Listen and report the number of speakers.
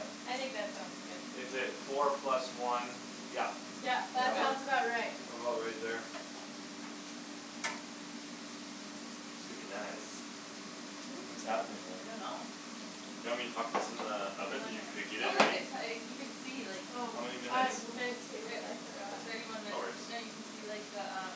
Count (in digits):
4